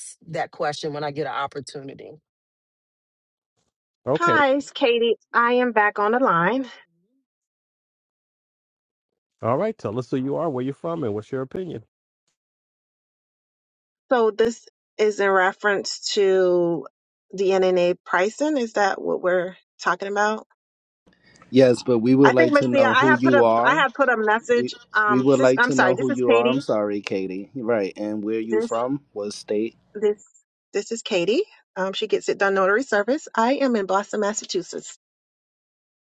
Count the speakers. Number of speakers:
four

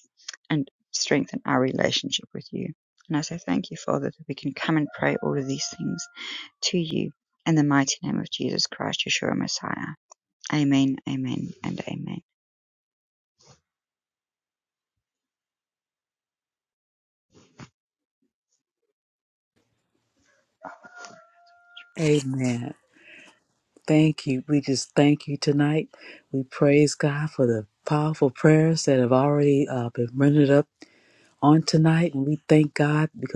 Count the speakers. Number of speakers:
two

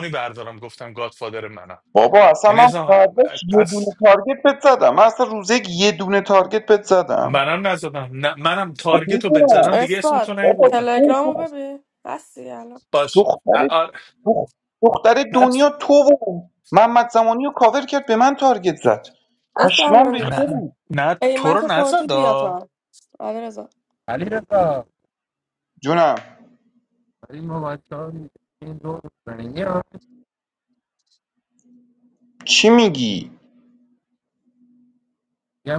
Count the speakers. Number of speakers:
four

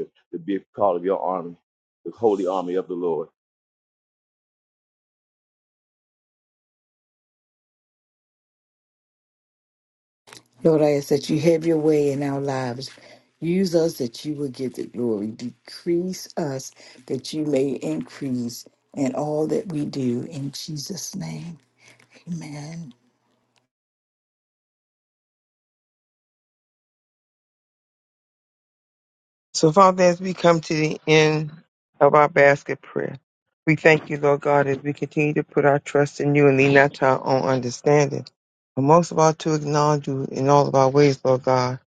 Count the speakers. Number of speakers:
three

